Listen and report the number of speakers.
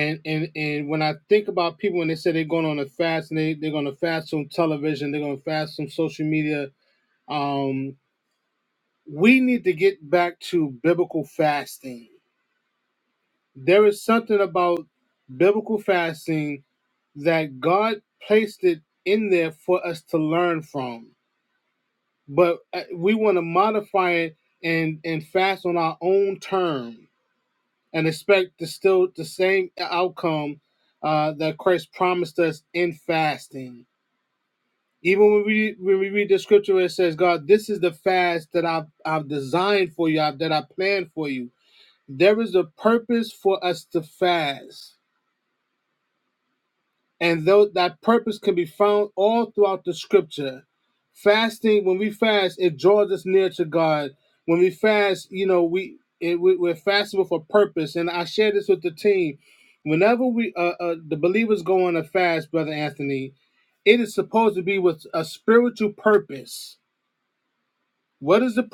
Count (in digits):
1